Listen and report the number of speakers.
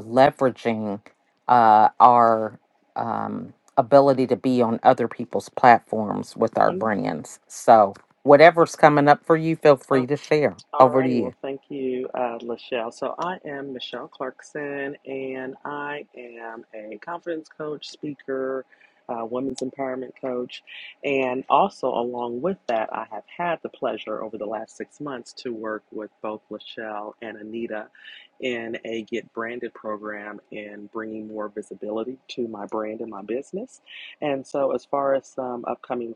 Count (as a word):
two